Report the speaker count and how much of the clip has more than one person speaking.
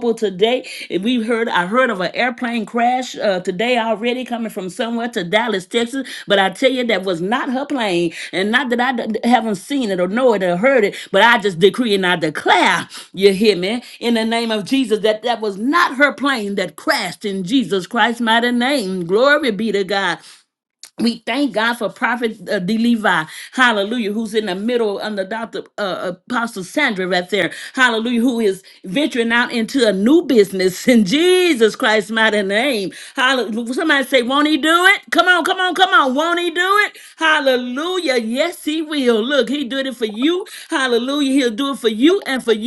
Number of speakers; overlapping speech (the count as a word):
one, no overlap